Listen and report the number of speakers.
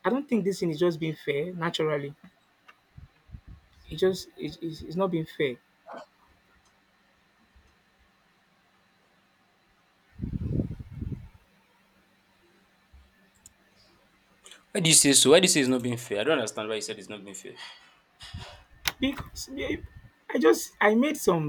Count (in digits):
2